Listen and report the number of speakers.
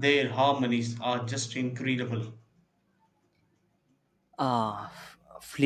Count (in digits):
2